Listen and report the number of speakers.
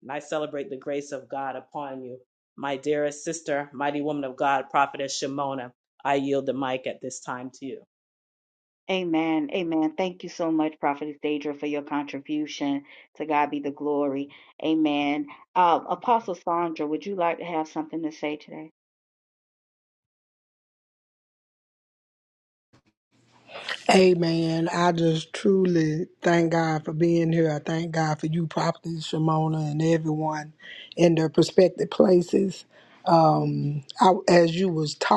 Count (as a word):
three